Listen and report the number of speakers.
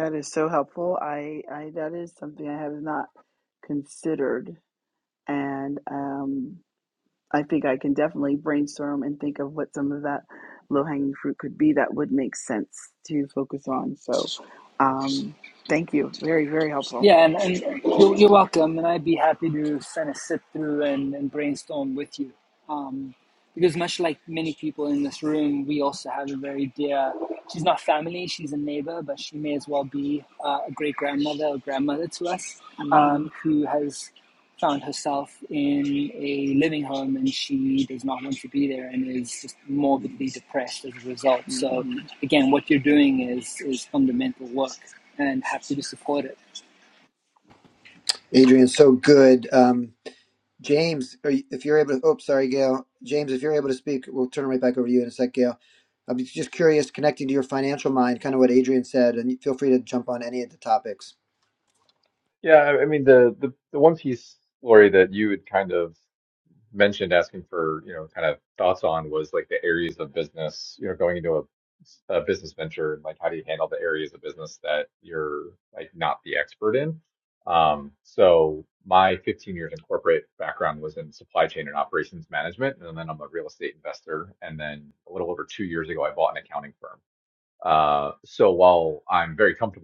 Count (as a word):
four